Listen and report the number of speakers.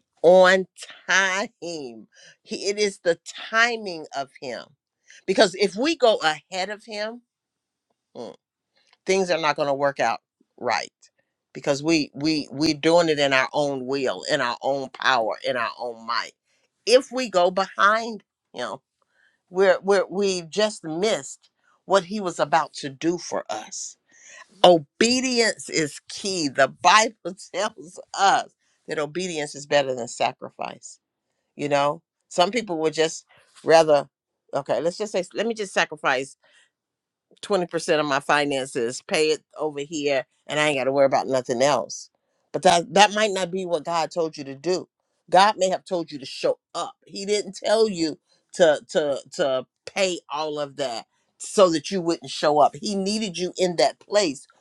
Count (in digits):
1